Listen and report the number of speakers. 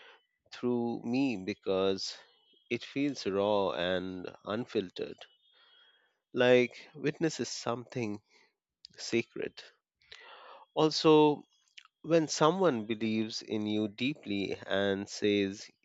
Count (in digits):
1